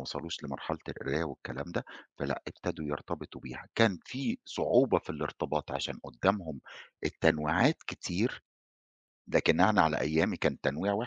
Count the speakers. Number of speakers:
1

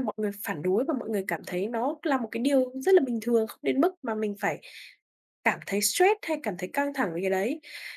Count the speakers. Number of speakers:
1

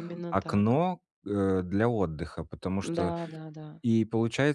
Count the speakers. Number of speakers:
2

